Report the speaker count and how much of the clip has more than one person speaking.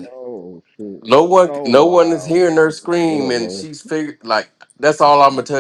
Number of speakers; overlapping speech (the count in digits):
2, about 30%